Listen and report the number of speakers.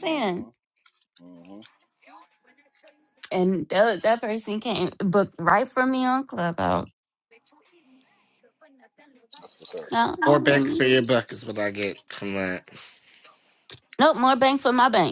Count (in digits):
3